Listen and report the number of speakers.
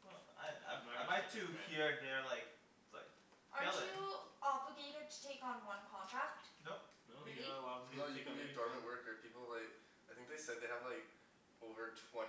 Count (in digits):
4